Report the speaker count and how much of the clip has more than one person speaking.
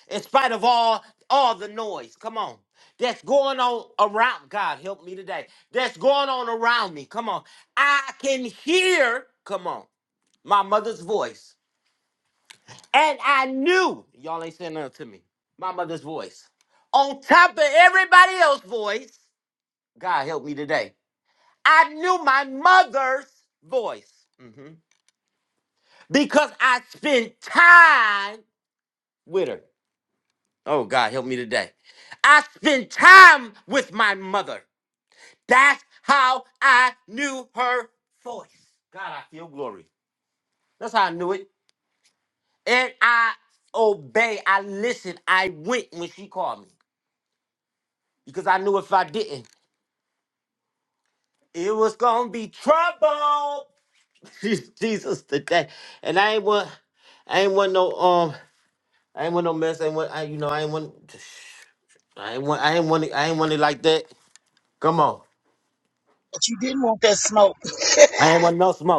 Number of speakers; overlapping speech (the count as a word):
two, no overlap